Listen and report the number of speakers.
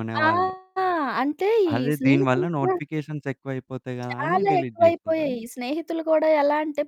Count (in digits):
2